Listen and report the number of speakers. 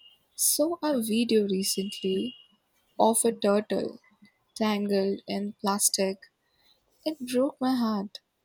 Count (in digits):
1